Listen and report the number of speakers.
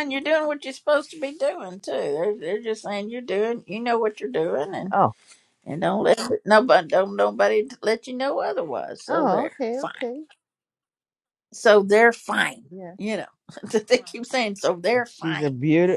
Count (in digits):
2